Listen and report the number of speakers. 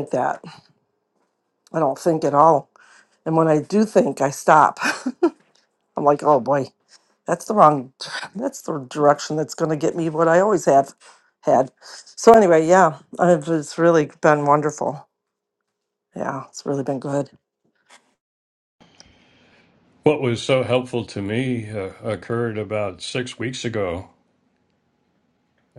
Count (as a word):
two